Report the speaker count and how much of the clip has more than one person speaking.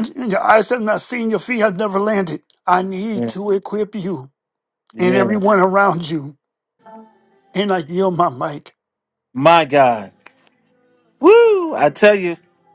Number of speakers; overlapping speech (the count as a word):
two, about 4%